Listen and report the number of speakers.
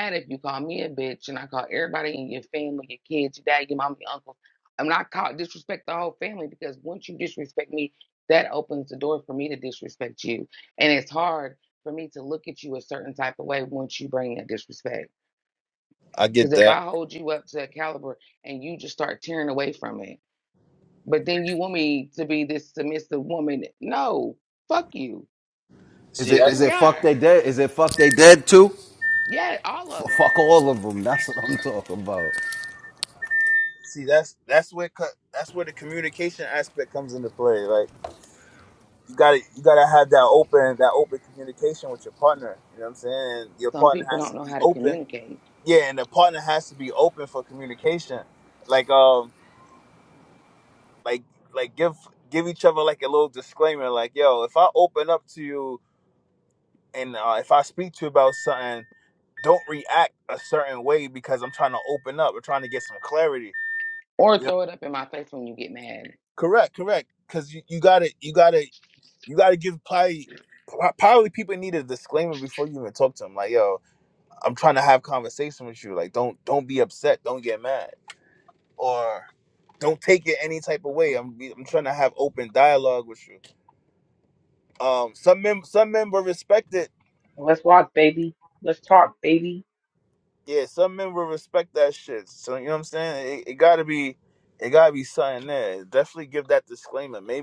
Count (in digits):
4